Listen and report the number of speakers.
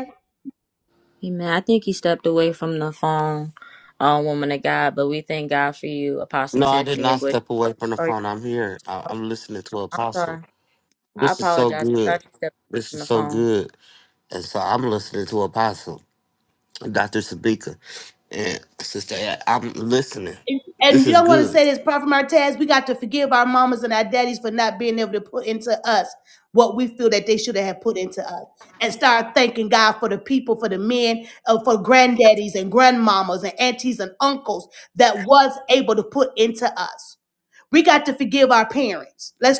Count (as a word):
three